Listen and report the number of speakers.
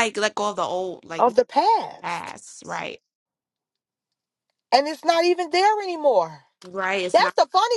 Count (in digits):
2